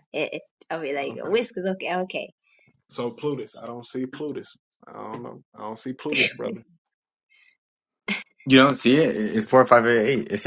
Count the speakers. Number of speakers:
three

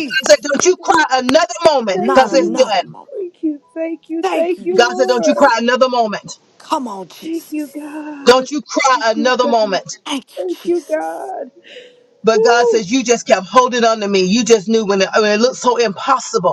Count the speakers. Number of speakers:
three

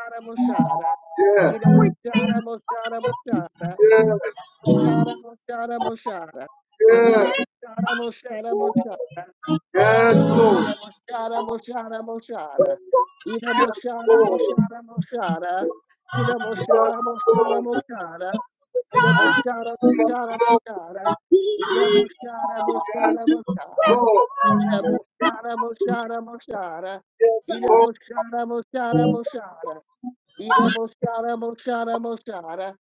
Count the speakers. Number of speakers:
two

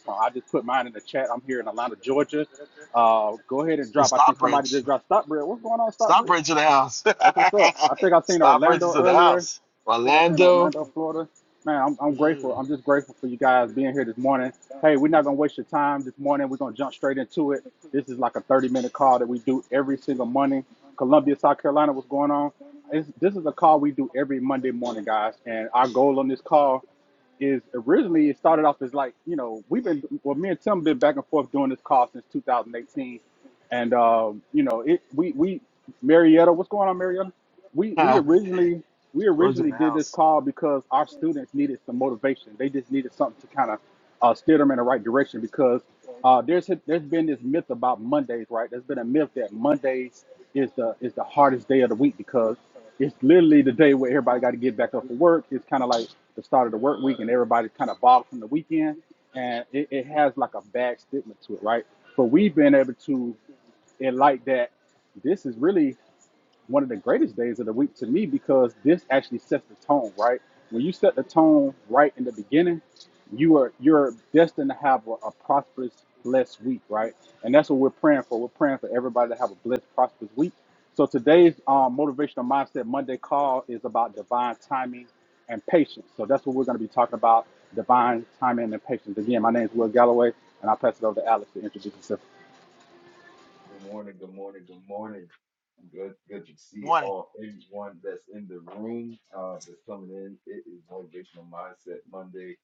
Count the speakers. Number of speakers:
three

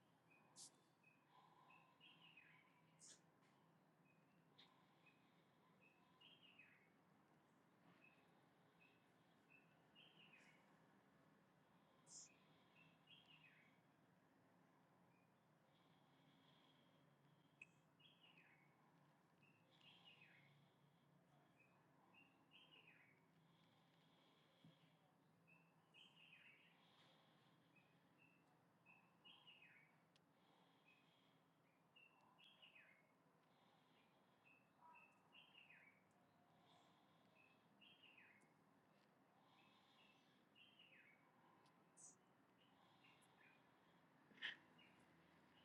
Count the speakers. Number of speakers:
zero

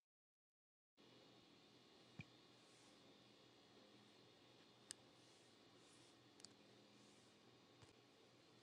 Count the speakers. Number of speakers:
zero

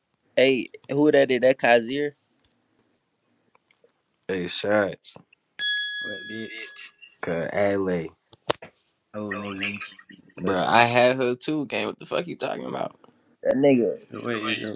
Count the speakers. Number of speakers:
three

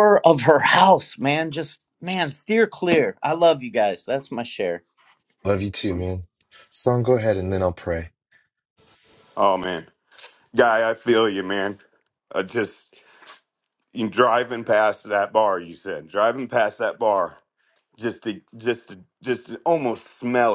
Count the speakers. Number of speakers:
three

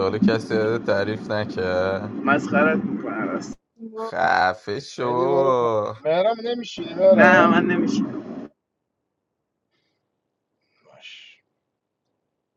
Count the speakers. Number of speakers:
three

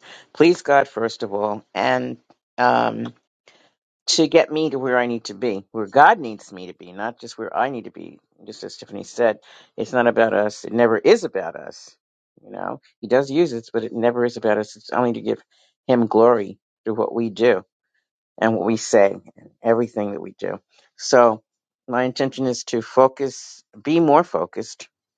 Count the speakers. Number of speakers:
one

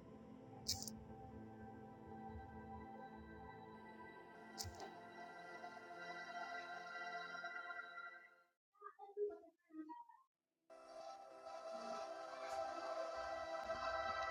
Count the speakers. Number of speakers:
zero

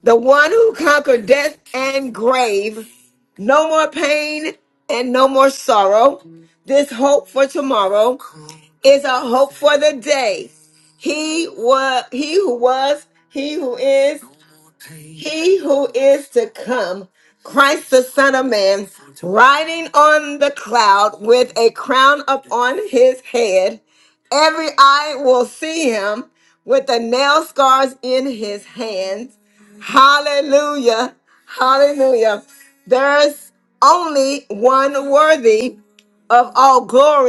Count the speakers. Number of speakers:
one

